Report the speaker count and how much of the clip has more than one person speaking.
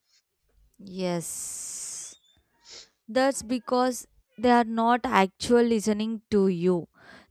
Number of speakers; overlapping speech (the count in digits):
1, no overlap